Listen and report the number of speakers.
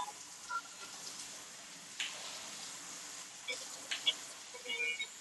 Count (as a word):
zero